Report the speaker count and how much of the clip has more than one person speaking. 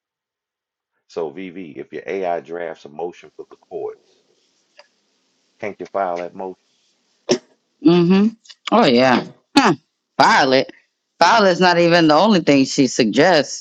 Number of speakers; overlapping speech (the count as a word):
two, no overlap